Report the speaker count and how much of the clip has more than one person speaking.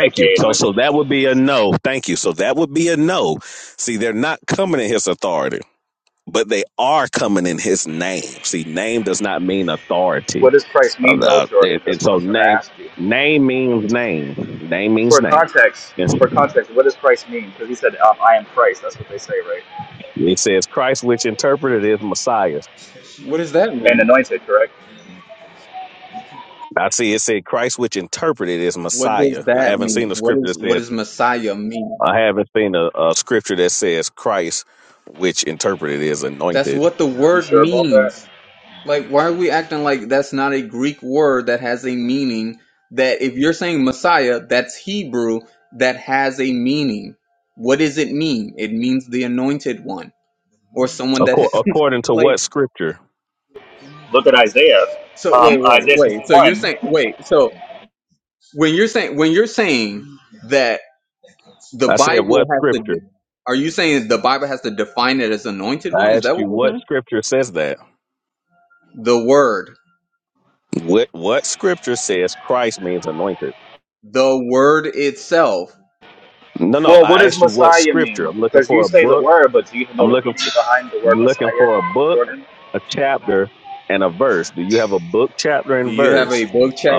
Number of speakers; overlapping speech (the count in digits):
3, about 15%